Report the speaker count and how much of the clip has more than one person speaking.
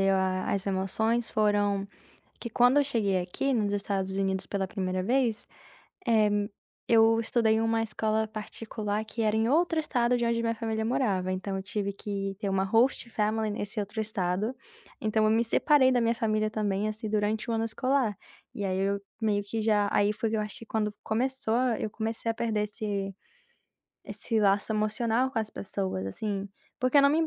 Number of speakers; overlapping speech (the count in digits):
1, no overlap